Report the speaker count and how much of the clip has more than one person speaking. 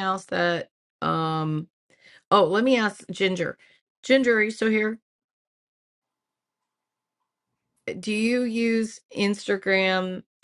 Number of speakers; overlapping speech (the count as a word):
one, no overlap